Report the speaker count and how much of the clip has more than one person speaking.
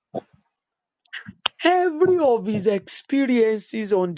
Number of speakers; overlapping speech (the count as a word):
one, no overlap